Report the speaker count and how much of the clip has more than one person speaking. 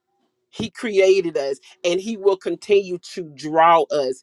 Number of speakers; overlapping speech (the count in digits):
1, no overlap